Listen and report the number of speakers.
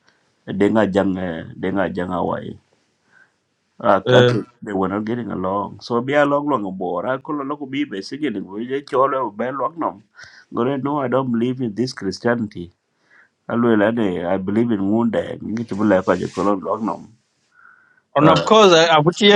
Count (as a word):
two